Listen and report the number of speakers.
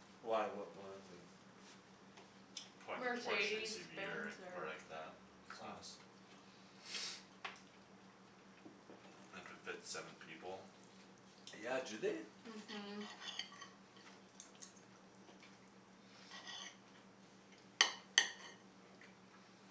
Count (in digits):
3